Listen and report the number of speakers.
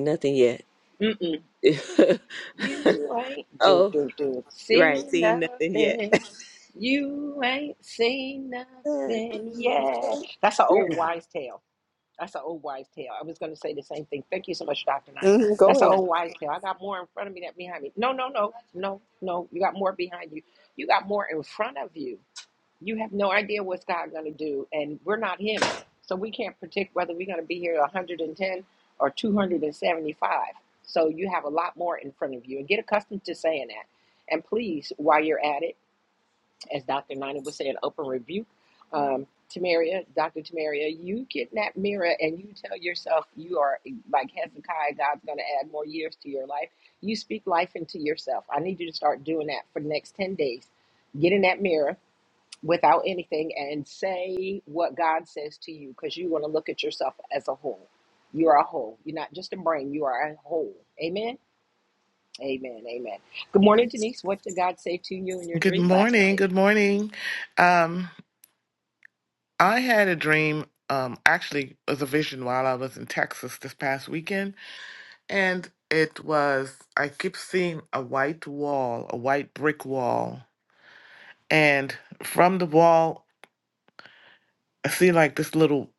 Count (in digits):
3